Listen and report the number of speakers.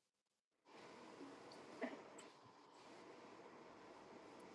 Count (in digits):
0